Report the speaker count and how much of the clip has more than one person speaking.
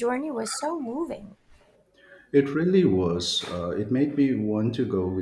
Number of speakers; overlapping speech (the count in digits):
2, no overlap